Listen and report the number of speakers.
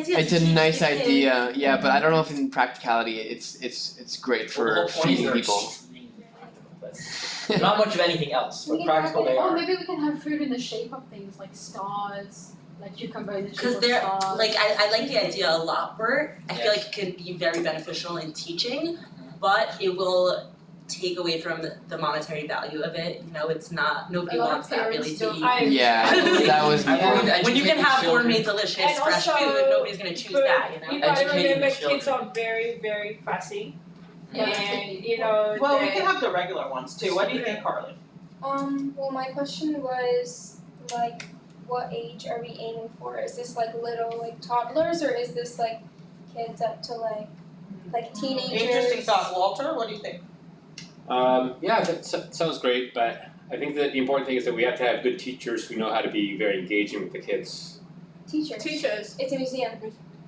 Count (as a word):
eight